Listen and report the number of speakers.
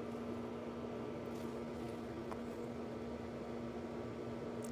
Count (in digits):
0